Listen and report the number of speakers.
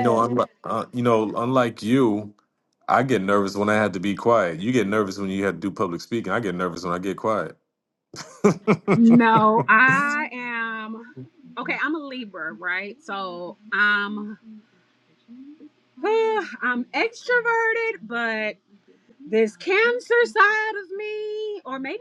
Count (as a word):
two